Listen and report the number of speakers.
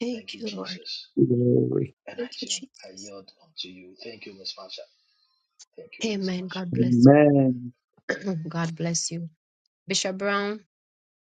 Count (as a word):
three